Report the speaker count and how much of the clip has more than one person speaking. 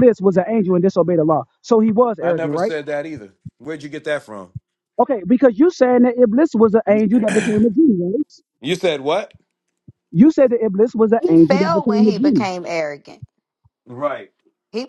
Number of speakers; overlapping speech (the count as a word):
three, about 13%